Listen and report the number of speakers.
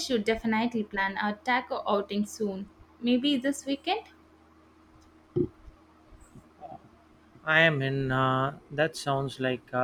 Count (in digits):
2